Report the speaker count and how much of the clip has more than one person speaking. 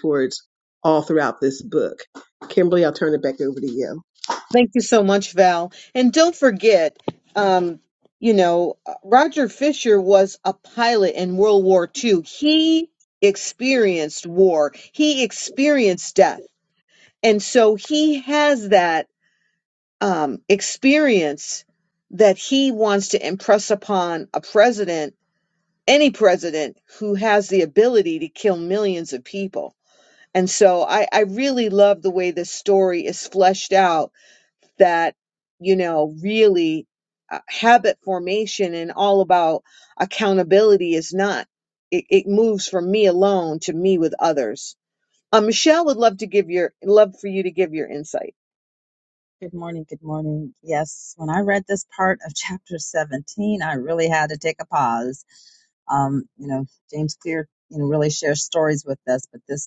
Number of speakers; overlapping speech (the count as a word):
three, no overlap